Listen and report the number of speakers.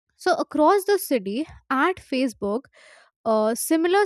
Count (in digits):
1